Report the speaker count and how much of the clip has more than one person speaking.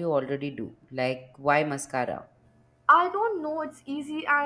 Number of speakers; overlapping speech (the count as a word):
two, no overlap